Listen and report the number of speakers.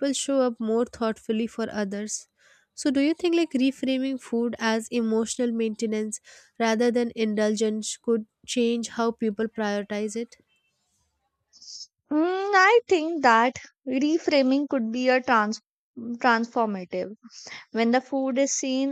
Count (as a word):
two